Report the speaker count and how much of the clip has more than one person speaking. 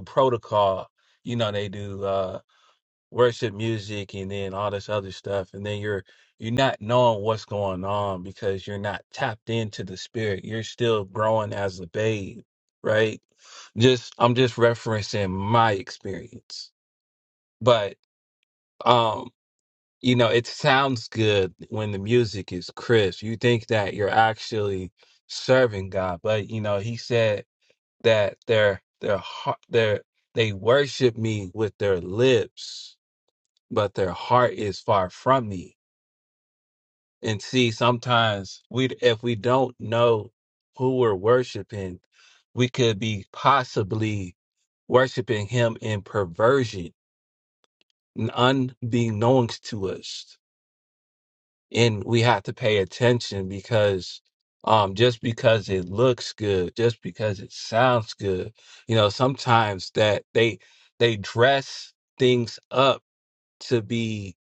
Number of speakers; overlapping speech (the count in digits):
1, no overlap